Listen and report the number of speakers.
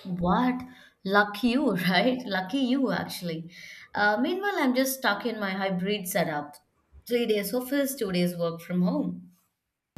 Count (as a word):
one